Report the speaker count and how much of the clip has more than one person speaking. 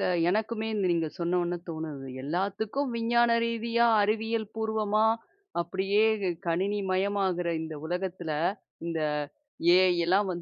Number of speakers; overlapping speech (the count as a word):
one, no overlap